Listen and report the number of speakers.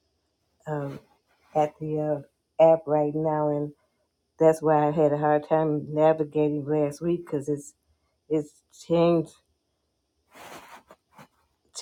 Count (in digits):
1